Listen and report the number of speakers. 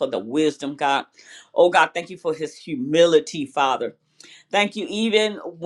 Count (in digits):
1